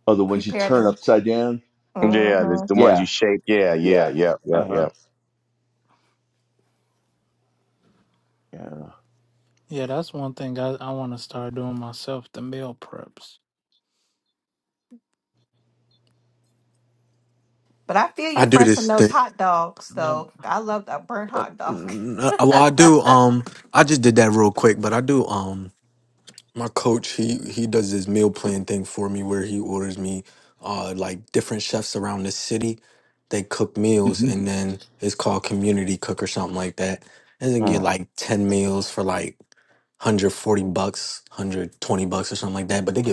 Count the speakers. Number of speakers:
5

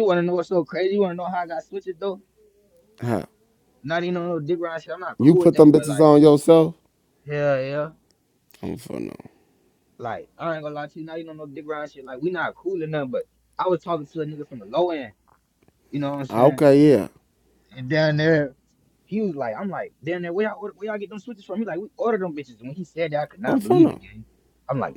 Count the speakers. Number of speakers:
2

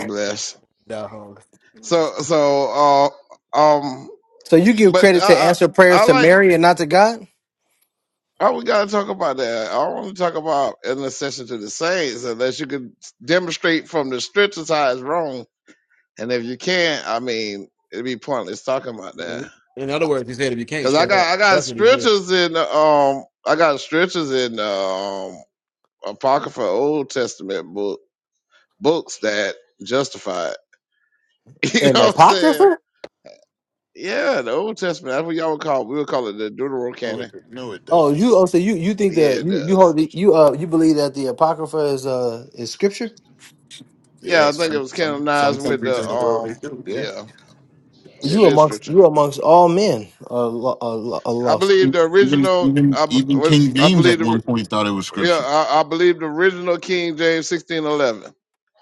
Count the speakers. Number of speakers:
4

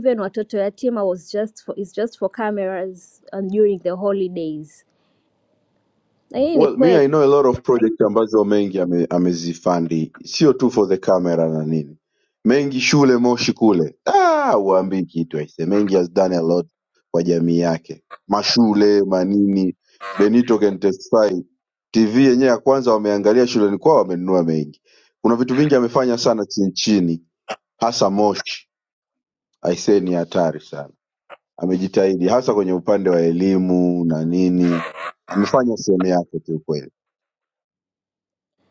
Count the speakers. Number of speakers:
2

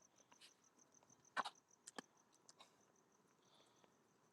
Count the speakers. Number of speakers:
0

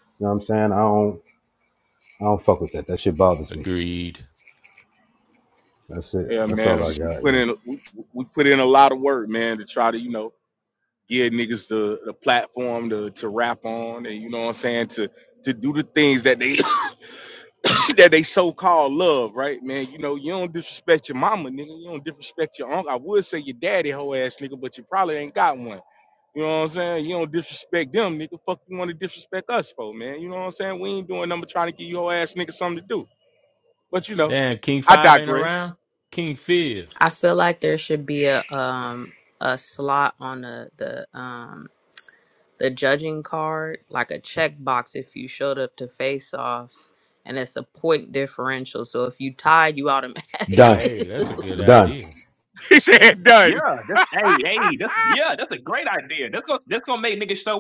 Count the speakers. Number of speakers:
5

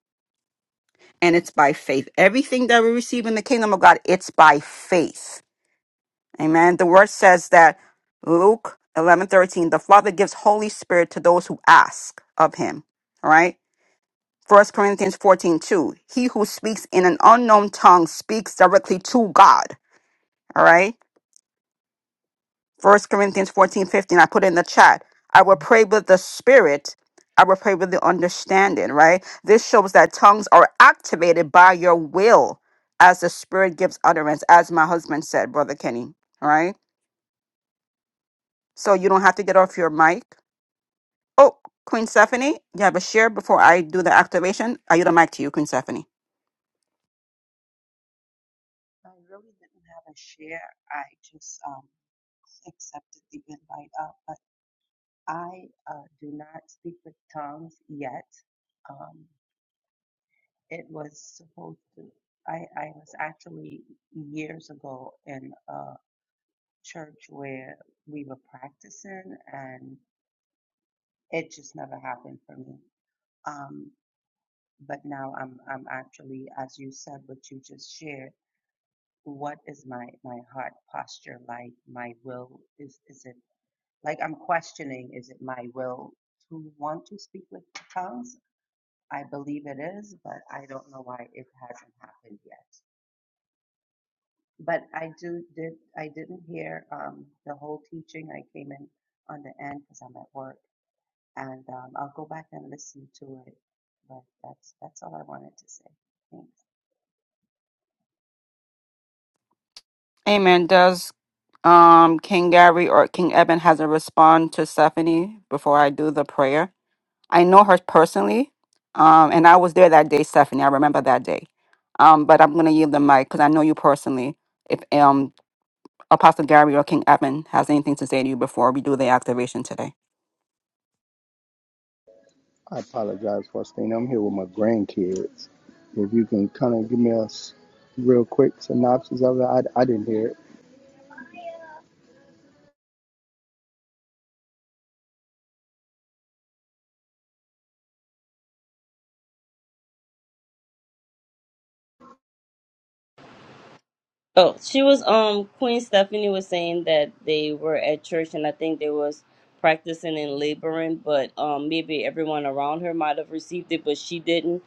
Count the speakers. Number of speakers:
4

